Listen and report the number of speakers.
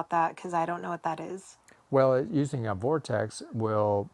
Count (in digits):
2